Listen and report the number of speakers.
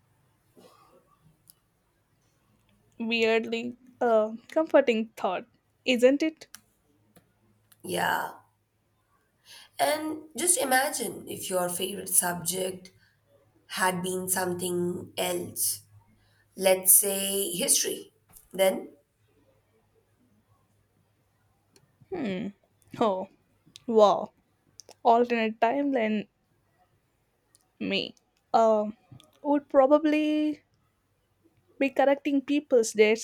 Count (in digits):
2